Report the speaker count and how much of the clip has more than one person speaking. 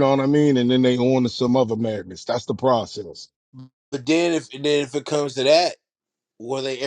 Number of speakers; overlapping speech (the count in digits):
2, no overlap